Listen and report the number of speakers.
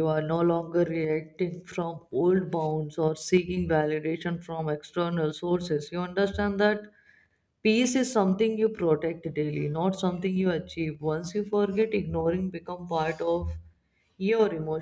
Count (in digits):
1